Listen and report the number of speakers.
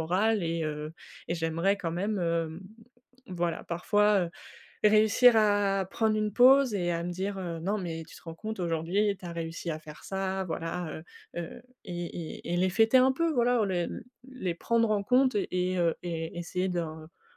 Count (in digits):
1